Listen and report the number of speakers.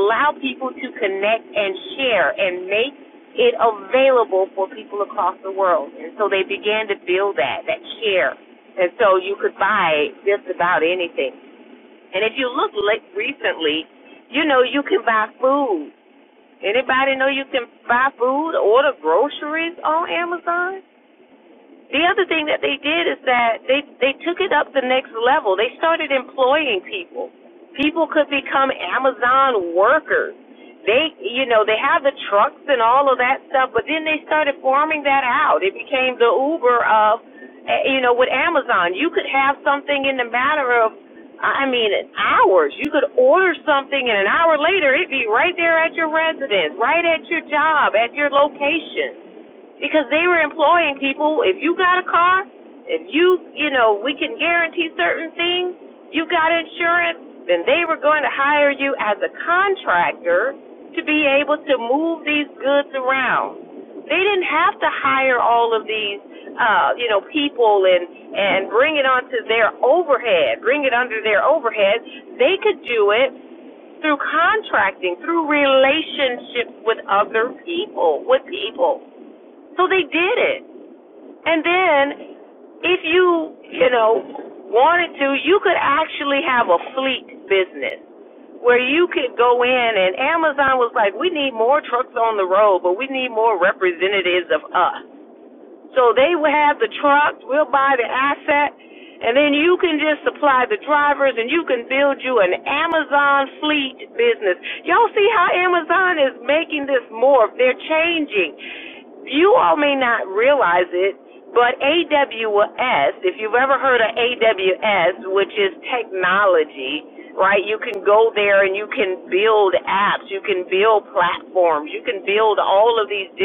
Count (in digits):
1